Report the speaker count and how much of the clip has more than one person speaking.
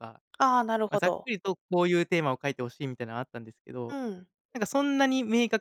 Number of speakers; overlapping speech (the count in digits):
2, about 7%